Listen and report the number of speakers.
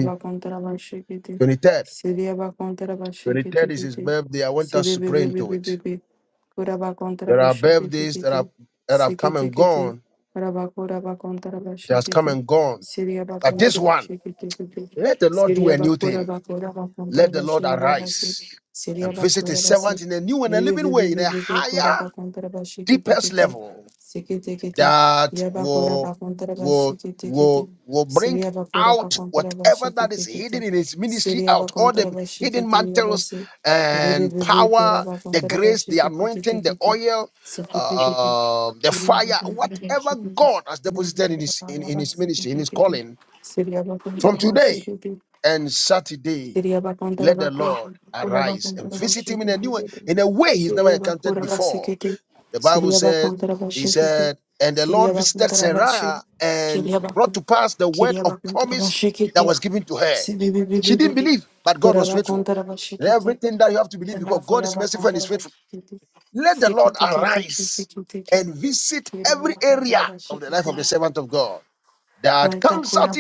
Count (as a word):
two